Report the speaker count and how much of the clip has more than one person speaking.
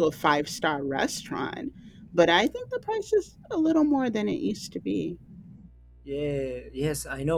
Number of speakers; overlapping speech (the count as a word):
two, about 1%